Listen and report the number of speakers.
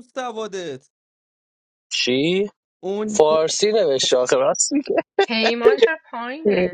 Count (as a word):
three